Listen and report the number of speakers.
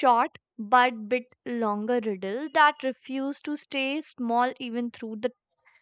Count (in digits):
1